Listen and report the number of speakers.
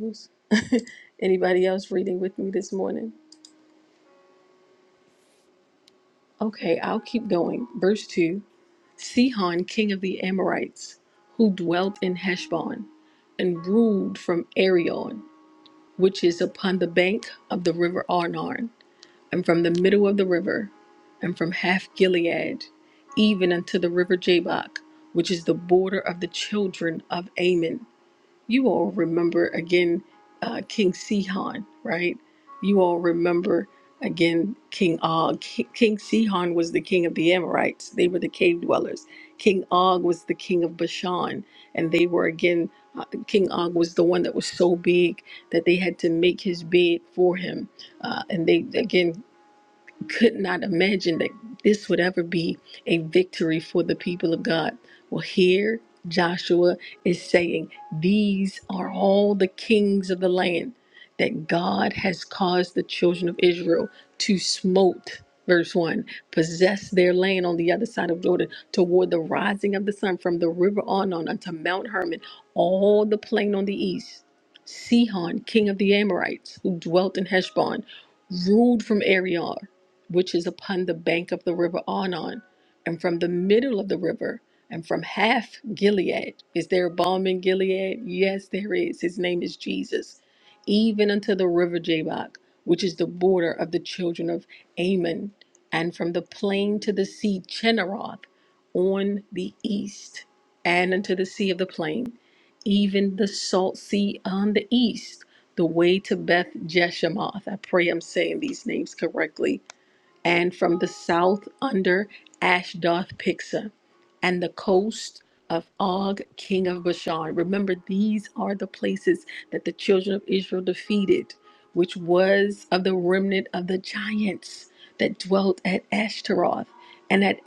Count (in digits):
1